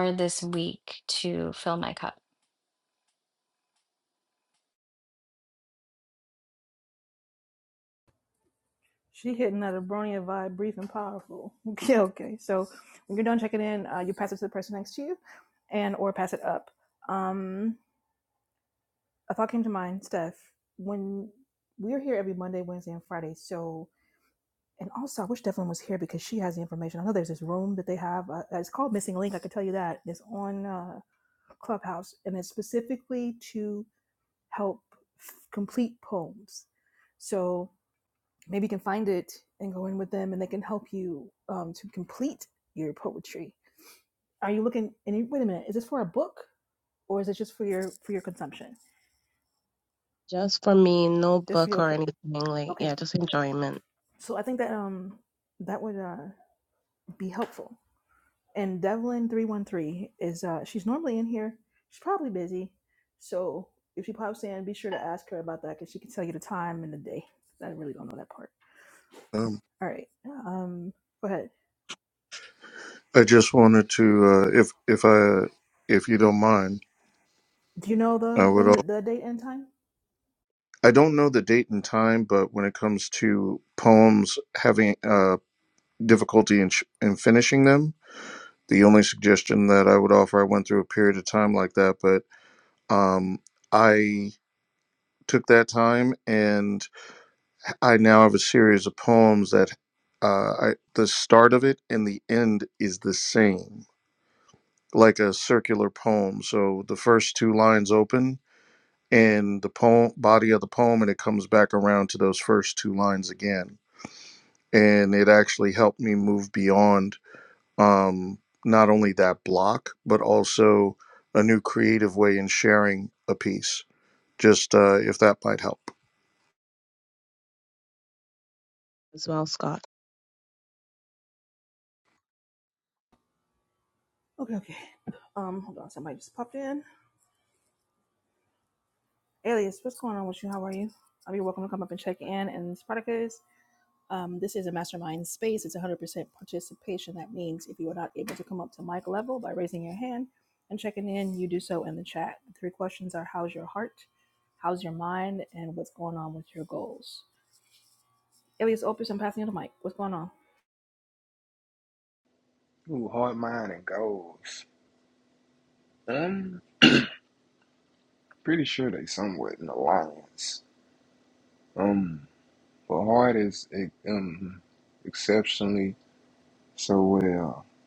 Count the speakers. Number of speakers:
five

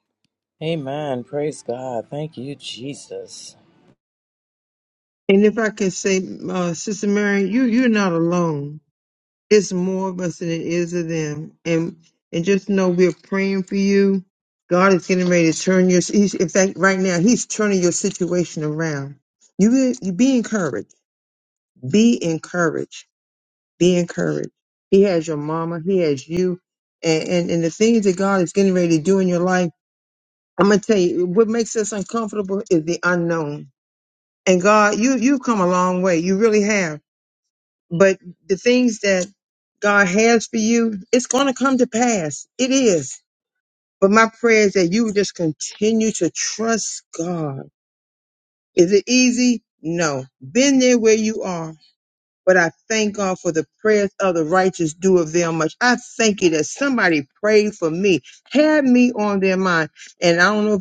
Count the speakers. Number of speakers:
two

